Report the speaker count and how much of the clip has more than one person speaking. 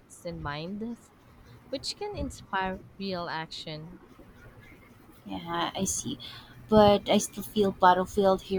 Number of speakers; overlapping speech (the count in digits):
2, no overlap